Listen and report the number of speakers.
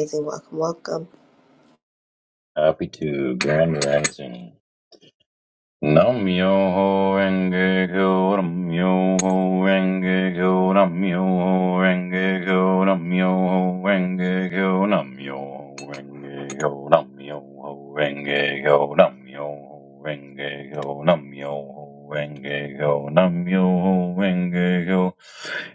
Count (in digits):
2